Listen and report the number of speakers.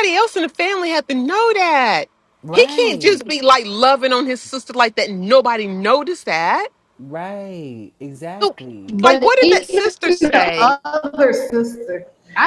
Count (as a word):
three